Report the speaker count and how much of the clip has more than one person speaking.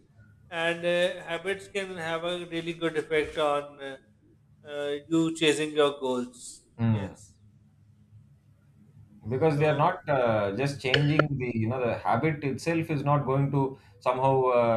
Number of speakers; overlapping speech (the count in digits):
2, about 3%